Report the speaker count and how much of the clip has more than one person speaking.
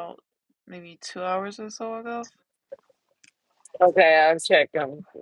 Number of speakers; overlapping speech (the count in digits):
2, no overlap